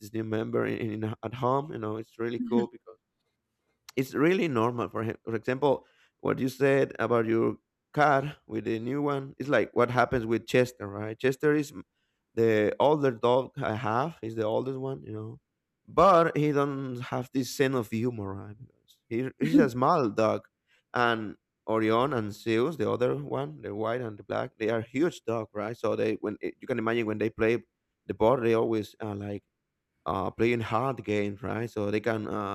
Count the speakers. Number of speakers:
1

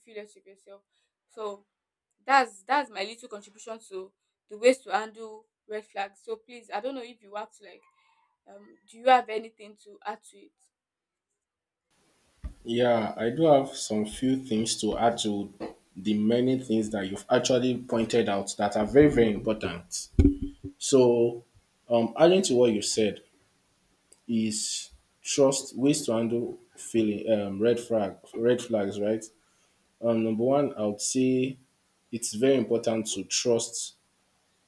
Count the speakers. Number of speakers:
2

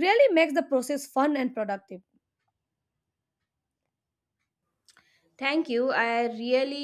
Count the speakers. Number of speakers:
2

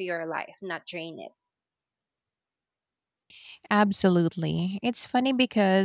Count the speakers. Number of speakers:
2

